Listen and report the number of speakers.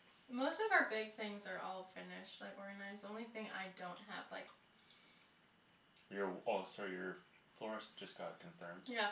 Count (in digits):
2